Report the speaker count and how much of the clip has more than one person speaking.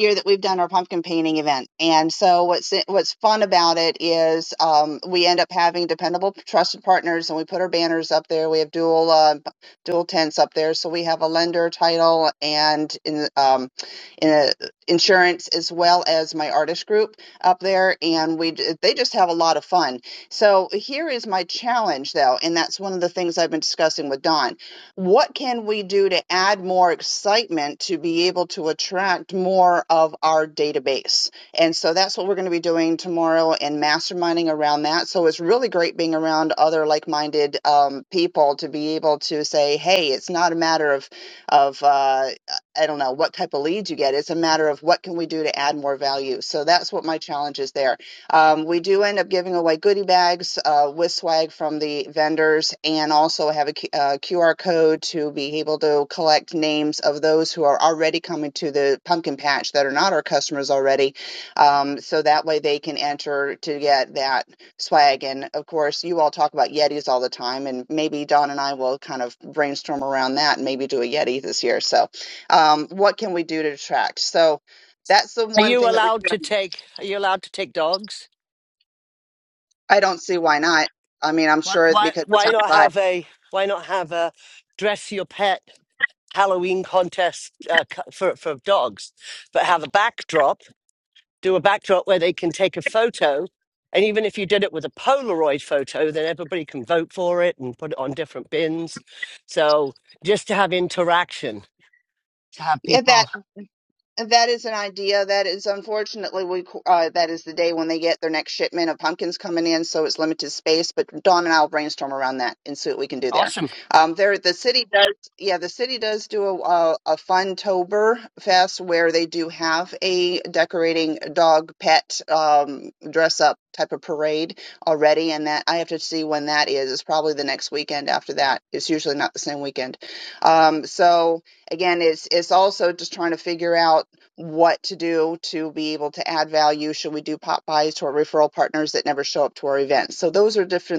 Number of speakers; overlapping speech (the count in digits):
2, about 2%